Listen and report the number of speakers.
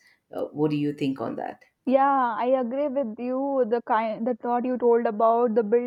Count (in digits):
2